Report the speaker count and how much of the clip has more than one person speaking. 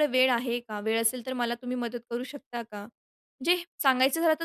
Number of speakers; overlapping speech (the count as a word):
one, no overlap